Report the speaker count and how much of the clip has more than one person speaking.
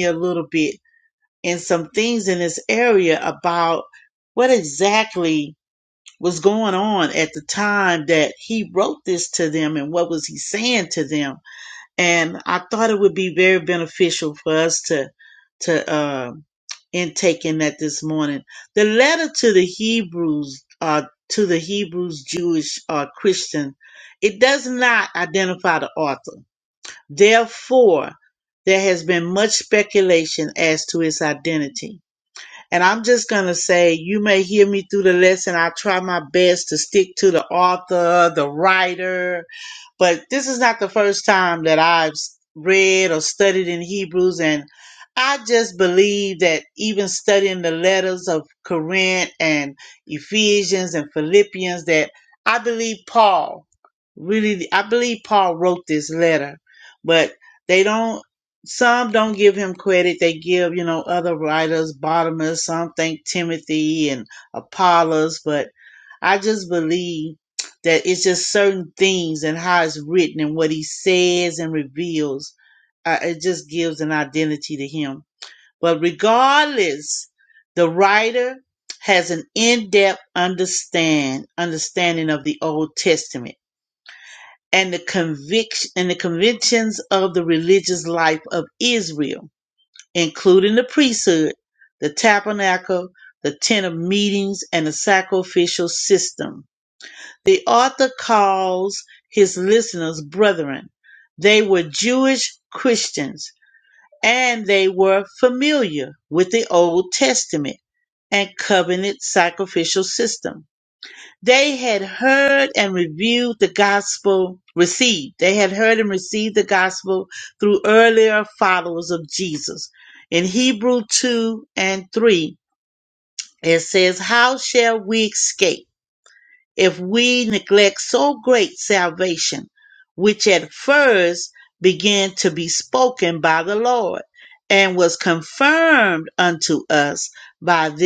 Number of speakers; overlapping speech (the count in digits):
1, no overlap